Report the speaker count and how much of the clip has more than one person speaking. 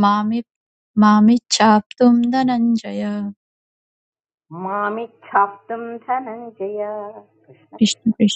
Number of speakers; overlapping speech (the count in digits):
2, about 4%